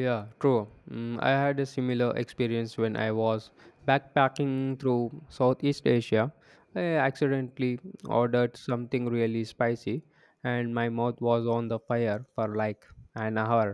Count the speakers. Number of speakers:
one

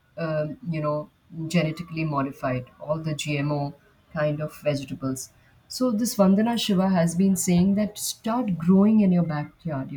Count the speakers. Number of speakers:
one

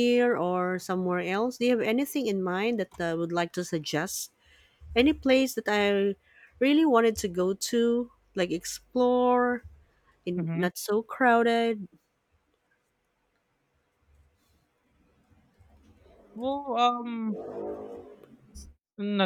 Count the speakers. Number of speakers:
two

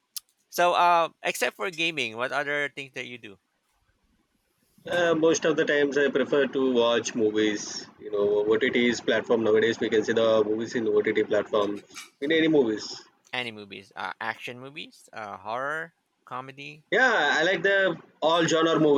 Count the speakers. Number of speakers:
two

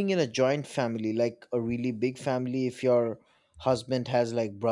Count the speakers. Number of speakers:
one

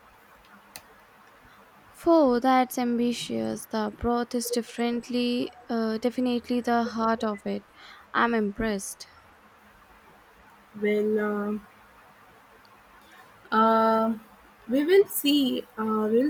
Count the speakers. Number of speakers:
two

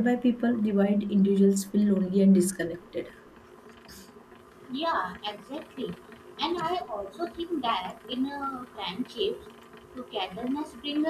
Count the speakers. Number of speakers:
two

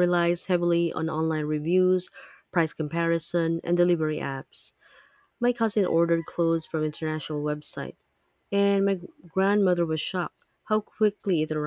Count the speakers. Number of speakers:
one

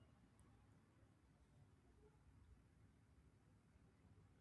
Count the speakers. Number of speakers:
zero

